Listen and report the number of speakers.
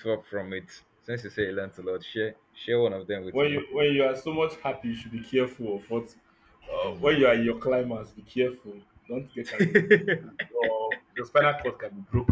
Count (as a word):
two